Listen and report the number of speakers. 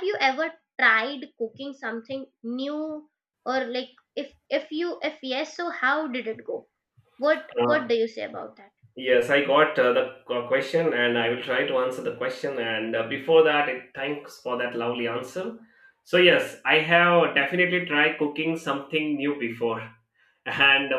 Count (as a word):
two